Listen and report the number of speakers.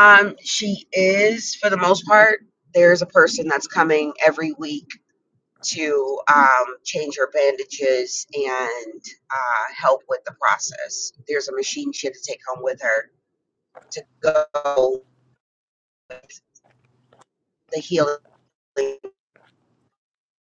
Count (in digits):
1